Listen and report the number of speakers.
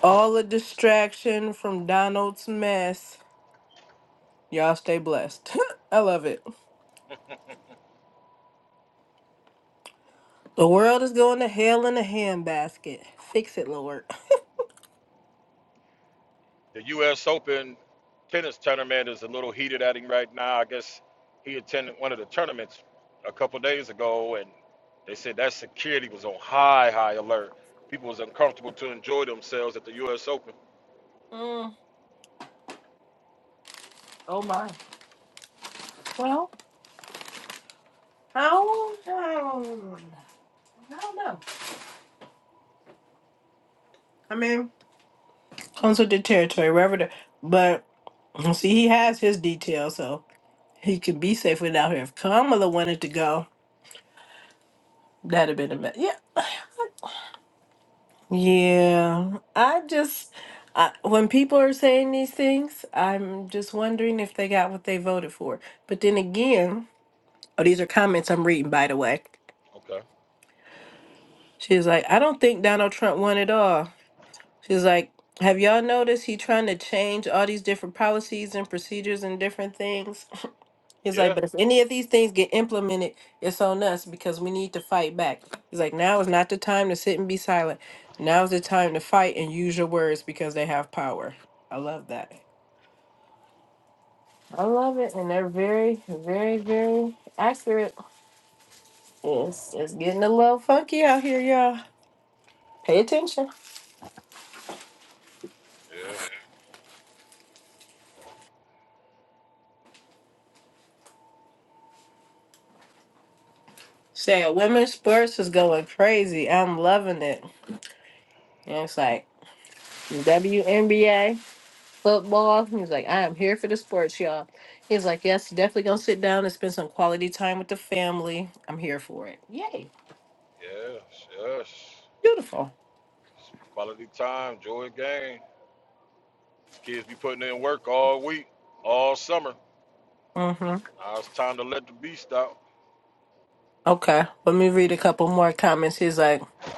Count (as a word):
two